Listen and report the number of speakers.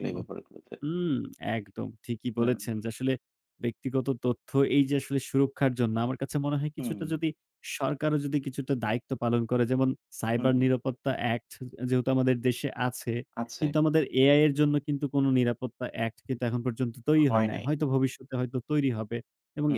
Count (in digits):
2